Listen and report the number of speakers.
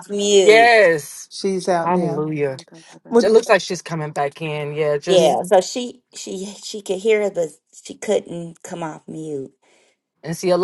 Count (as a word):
three